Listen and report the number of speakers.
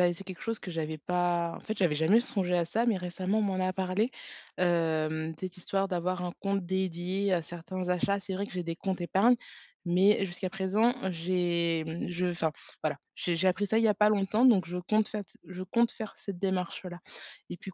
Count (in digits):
1